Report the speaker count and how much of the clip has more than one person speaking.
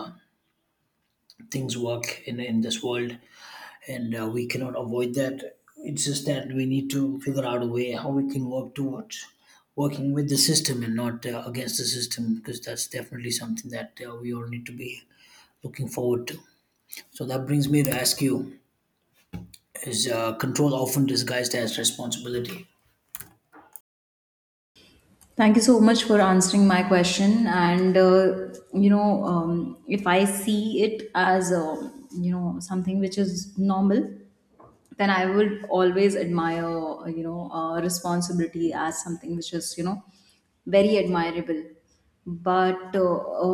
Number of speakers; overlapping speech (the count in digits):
2, no overlap